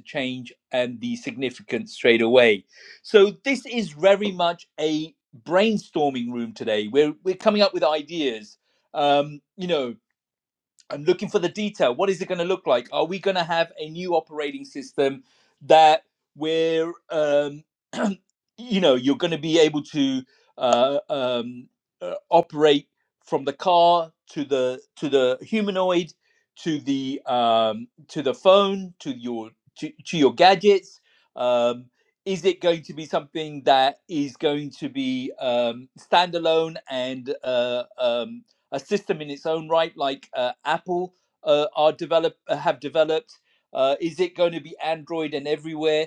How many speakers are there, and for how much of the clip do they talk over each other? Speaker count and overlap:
one, no overlap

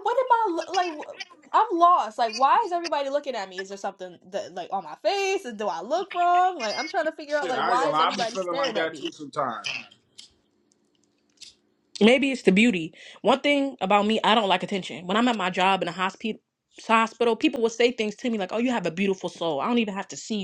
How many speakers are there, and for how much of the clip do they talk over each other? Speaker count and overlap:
three, about 8%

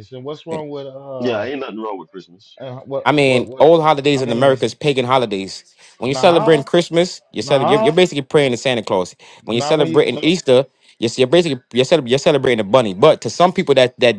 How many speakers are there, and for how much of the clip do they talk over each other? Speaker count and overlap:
three, about 23%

